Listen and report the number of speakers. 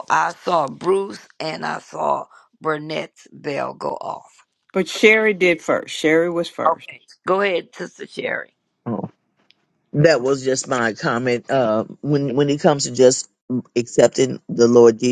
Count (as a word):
three